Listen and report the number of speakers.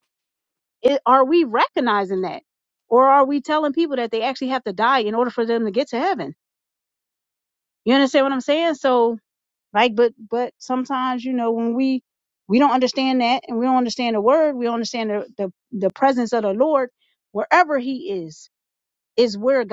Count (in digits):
1